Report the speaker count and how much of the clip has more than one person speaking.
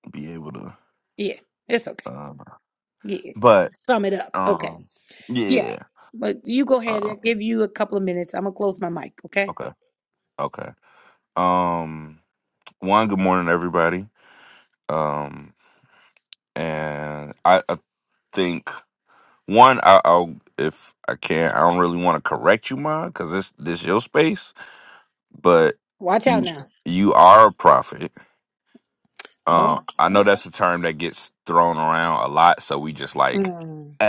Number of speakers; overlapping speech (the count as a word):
two, about 5%